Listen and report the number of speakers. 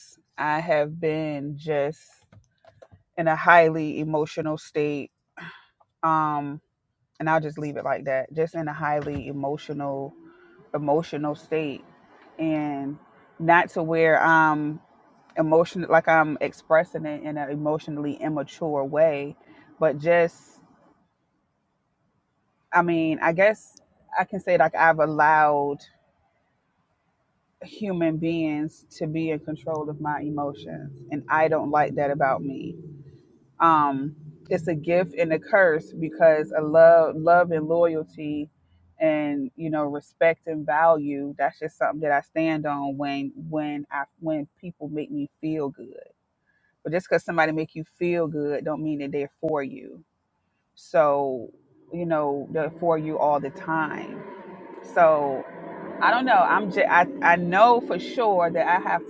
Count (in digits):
1